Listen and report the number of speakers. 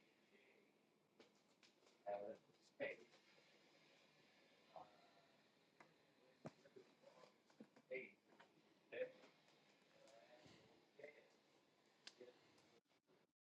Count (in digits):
0